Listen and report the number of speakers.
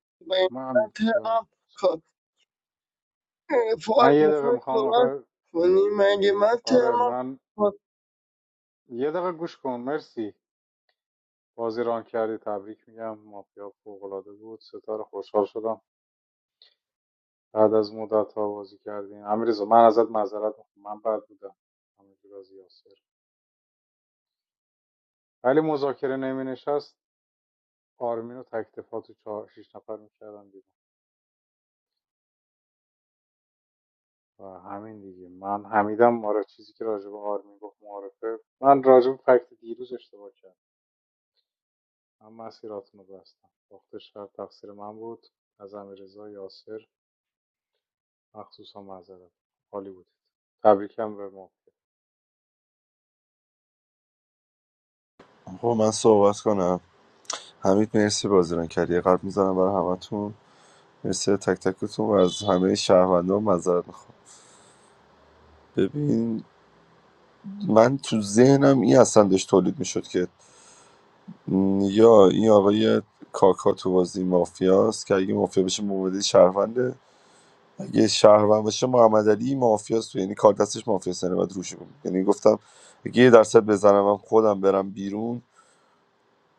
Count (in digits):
3